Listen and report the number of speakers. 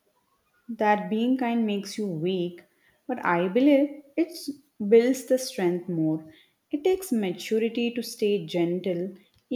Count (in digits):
1